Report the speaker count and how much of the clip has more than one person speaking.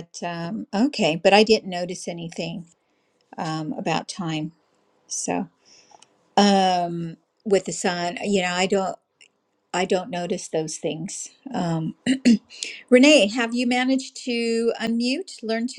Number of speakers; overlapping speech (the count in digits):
1, no overlap